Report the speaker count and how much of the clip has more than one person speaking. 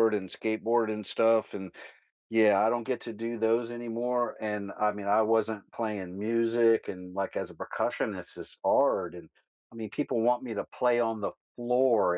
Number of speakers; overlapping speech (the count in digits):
1, no overlap